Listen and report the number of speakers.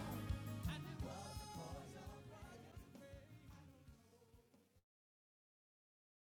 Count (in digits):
0